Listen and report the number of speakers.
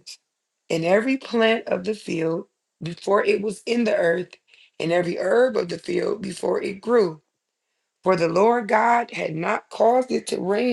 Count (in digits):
1